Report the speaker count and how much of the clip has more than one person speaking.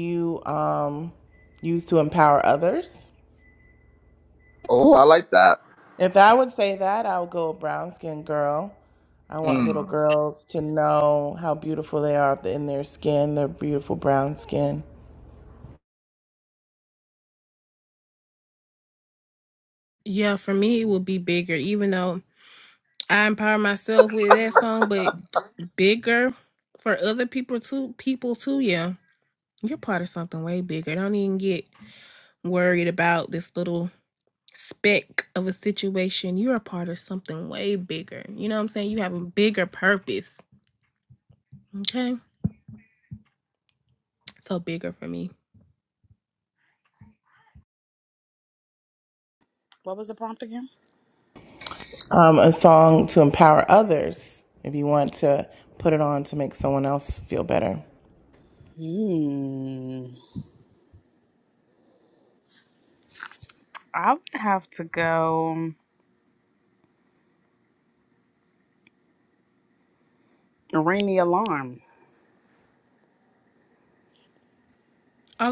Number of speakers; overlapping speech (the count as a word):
four, about 1%